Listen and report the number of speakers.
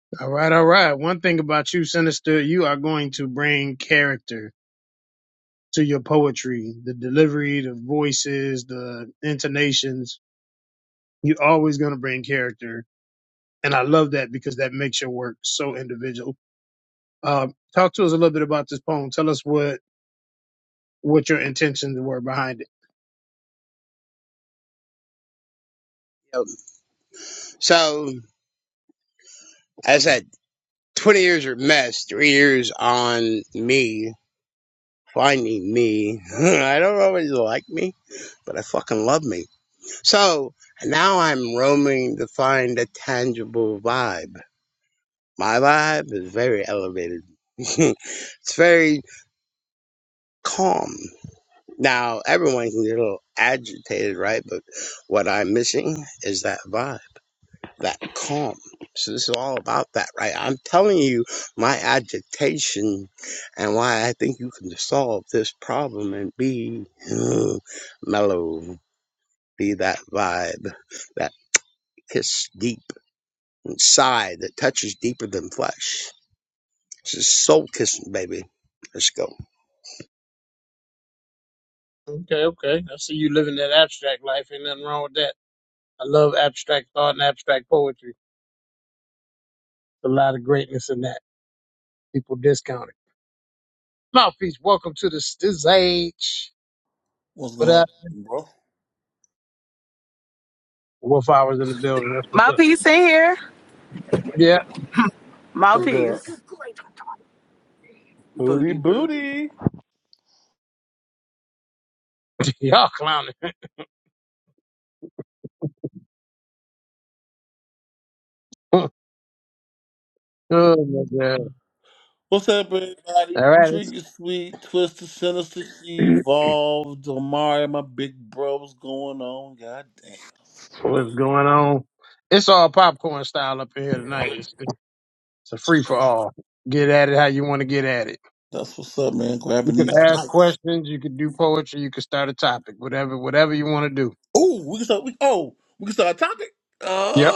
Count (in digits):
4